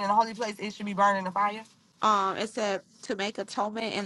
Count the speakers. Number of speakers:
two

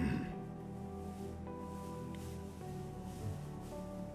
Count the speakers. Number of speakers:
zero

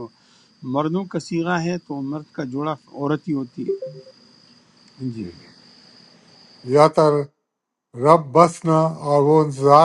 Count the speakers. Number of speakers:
two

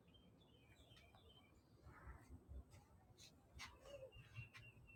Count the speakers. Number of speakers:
zero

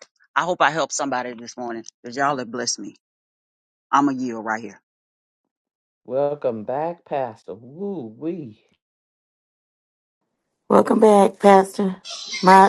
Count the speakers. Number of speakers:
three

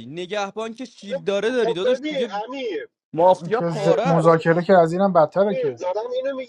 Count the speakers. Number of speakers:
three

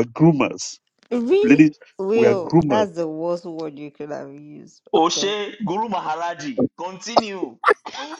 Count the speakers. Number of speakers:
three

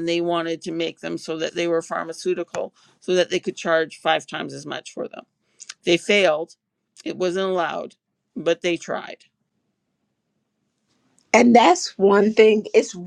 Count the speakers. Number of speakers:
two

